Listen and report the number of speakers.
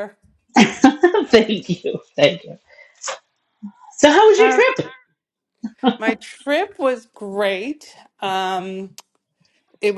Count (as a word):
two